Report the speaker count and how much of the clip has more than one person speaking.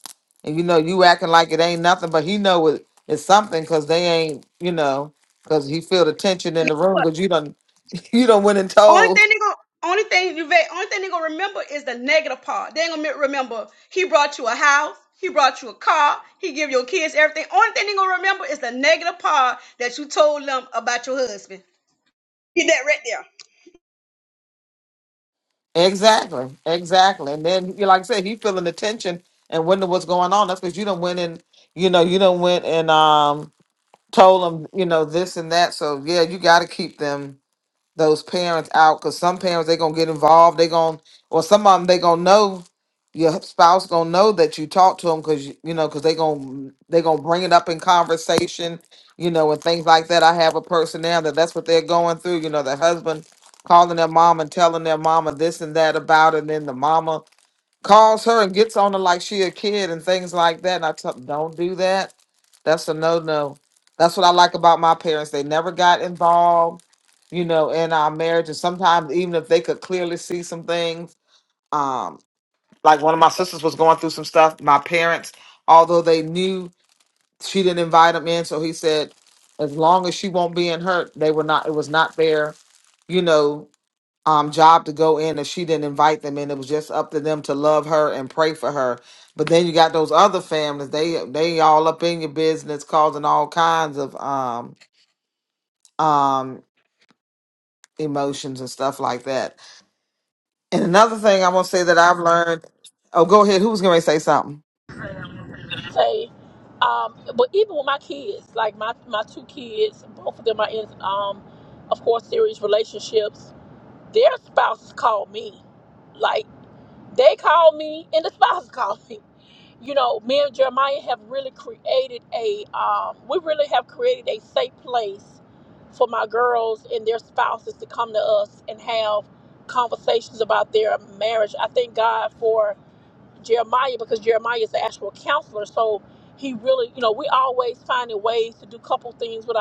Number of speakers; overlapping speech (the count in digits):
3, under 1%